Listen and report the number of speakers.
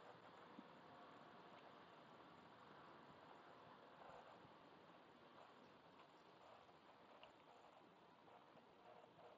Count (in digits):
0